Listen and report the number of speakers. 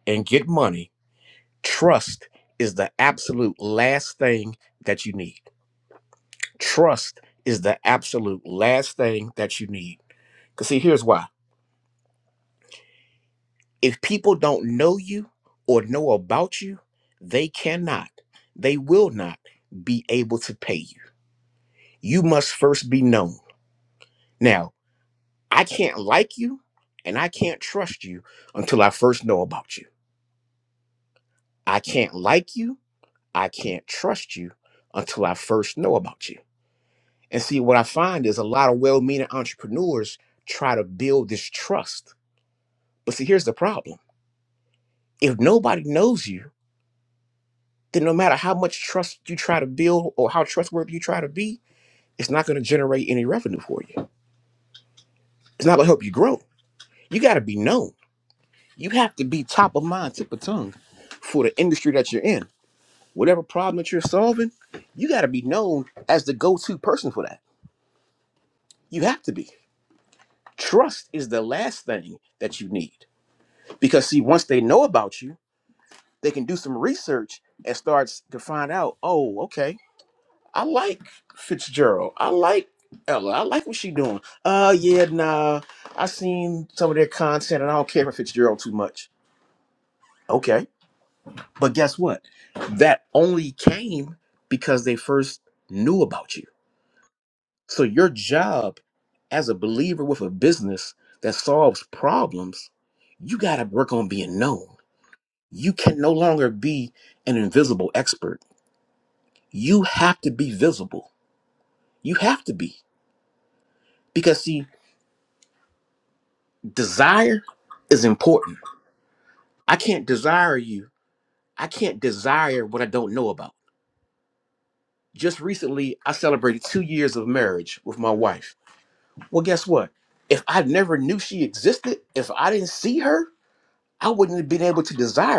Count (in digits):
1